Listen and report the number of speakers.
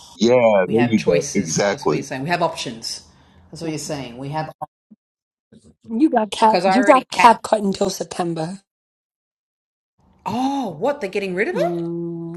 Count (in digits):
3